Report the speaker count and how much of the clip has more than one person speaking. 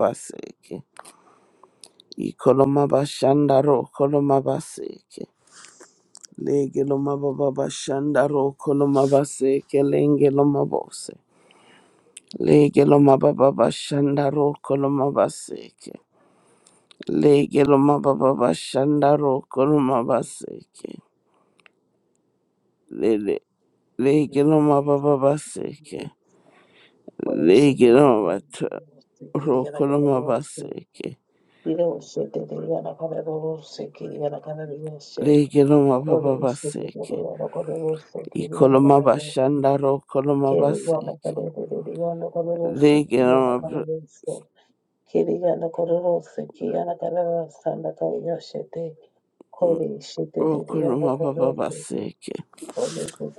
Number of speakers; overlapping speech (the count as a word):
two, about 16%